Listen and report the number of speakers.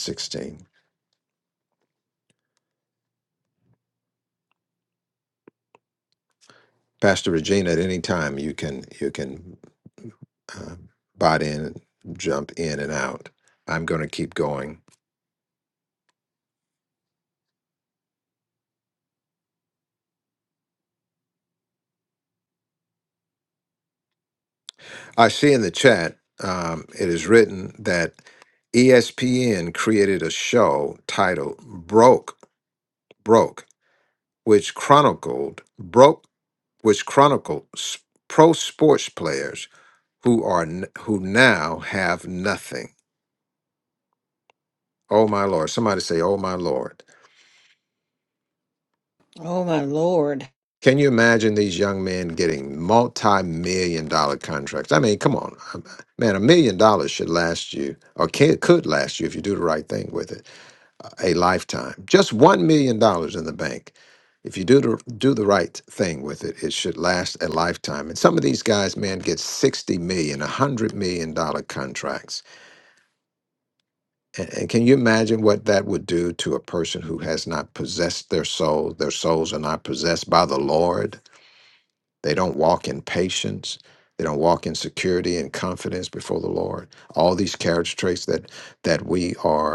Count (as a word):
two